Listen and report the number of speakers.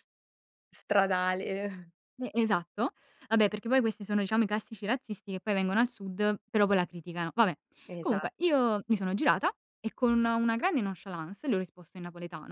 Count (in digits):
2